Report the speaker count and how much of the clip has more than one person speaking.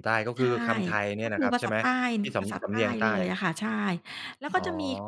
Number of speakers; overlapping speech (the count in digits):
2, about 37%